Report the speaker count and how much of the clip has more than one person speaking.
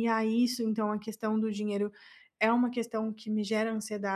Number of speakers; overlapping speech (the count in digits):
1, no overlap